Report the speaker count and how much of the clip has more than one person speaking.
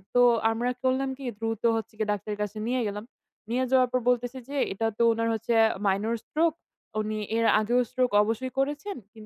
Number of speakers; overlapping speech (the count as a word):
one, no overlap